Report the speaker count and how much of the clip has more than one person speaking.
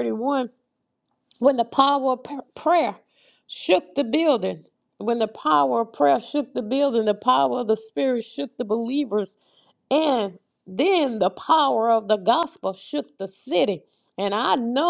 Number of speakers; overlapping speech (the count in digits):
1, no overlap